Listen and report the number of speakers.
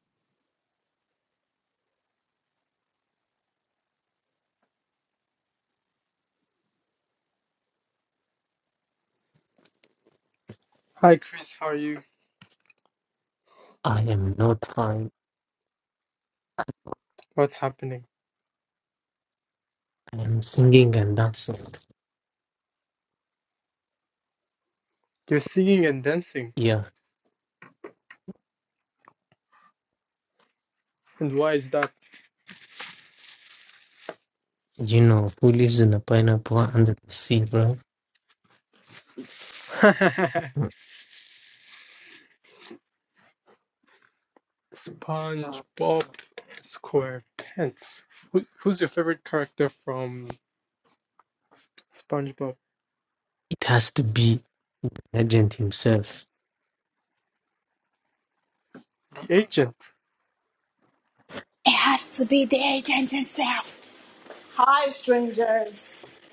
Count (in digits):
3